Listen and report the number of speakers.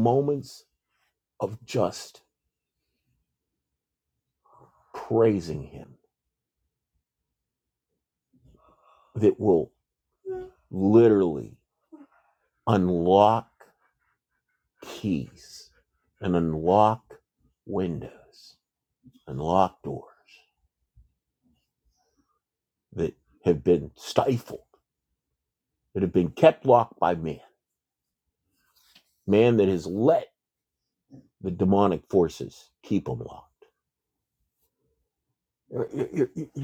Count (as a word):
one